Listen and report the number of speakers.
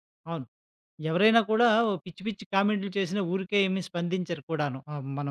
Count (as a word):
one